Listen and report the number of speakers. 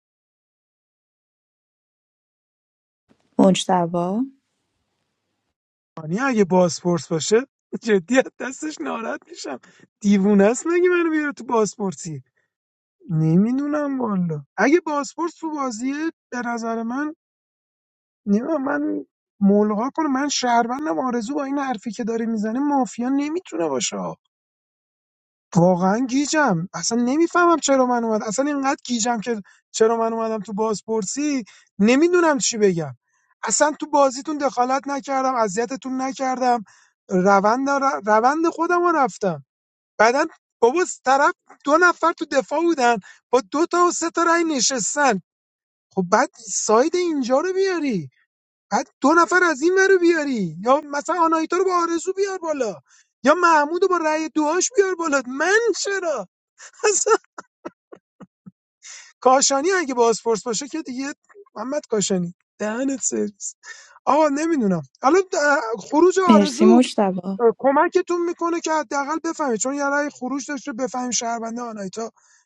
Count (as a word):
two